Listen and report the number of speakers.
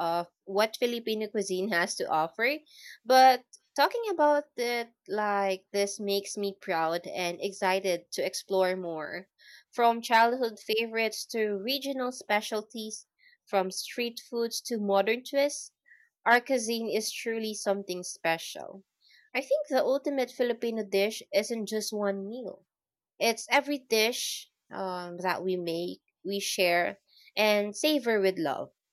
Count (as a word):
one